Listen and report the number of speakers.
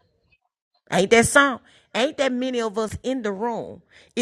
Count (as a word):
one